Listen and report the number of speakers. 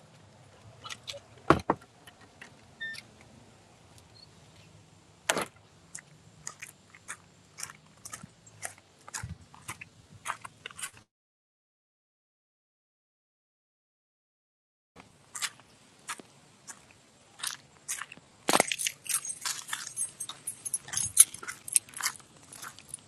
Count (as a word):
zero